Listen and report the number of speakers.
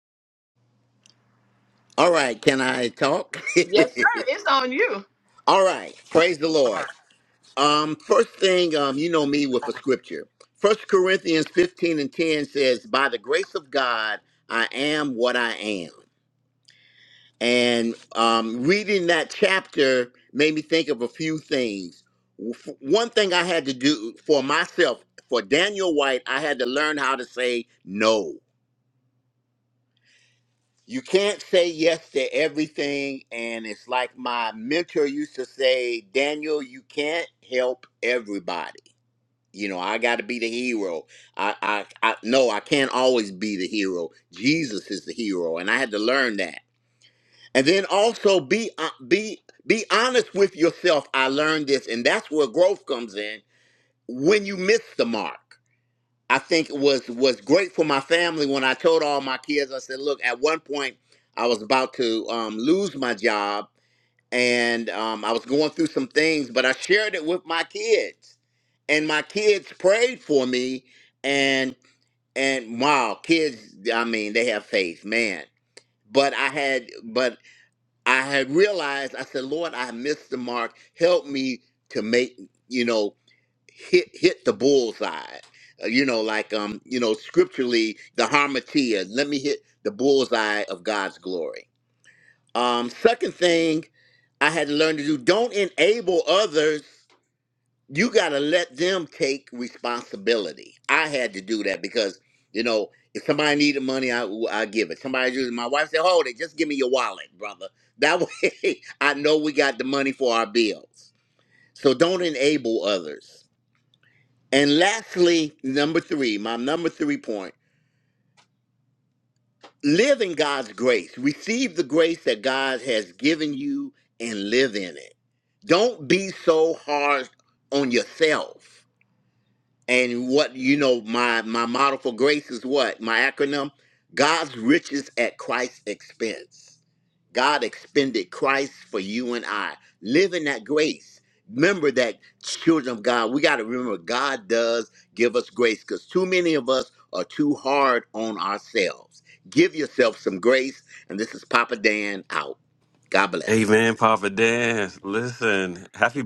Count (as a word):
three